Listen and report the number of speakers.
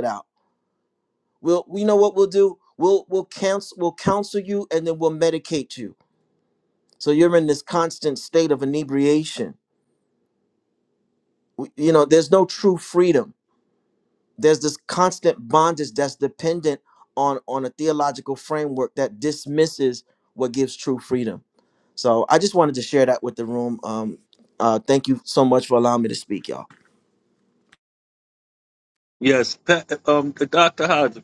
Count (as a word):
two